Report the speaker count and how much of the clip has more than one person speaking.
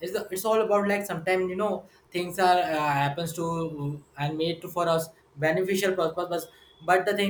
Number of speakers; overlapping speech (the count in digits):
1, no overlap